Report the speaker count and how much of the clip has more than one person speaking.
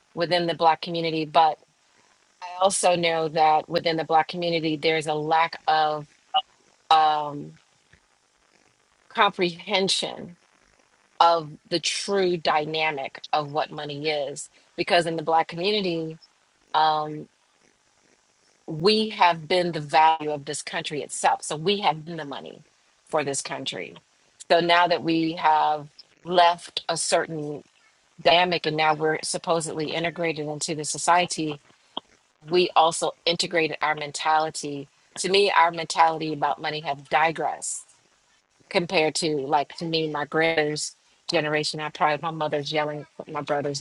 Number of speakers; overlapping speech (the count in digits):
1, no overlap